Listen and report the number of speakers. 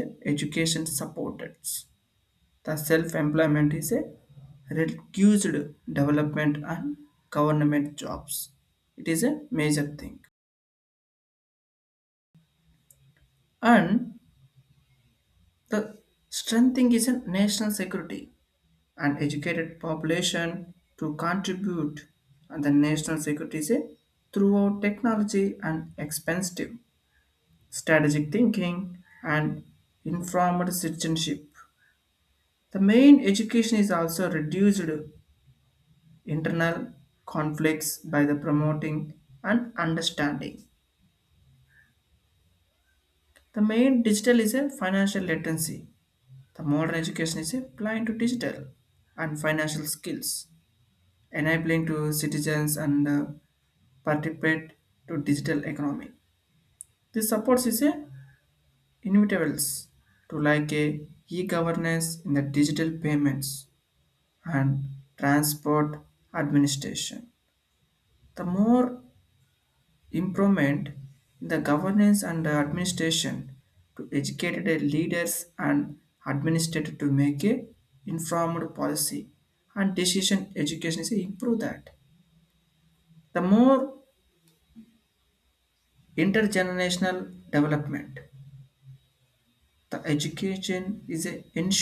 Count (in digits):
1